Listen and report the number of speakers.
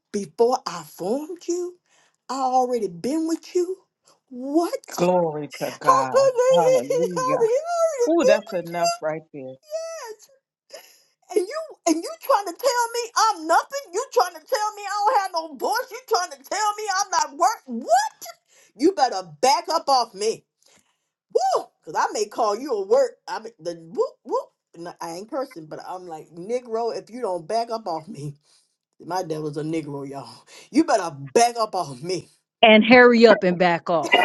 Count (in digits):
3